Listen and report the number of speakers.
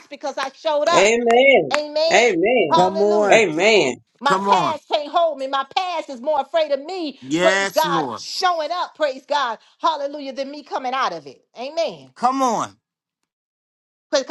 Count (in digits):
3